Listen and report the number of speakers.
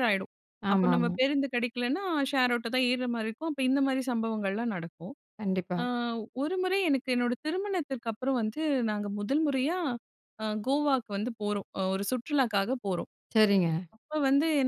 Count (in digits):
2